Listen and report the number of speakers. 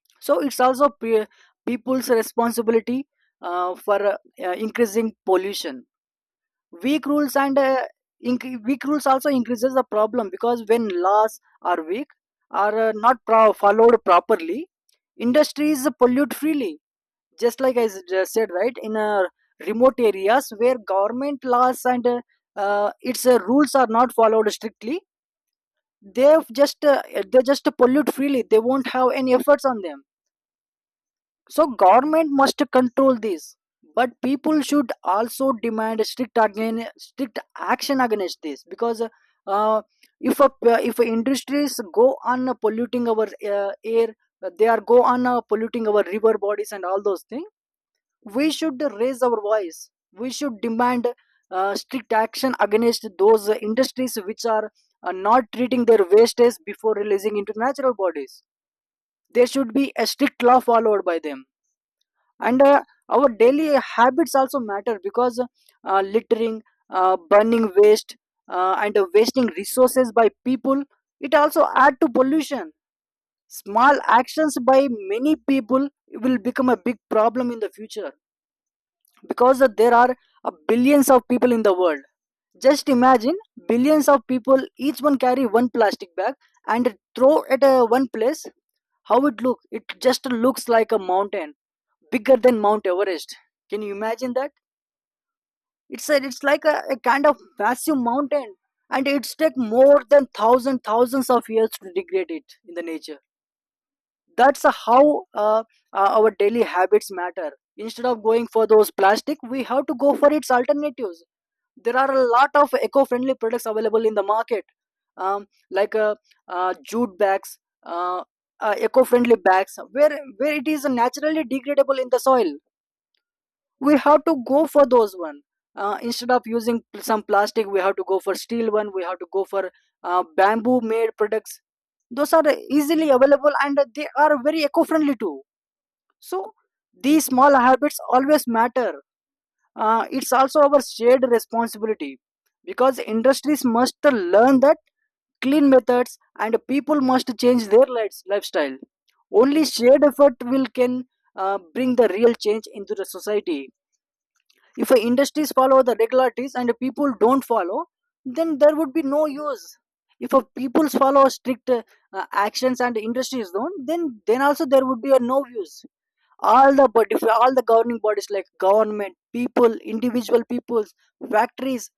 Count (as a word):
one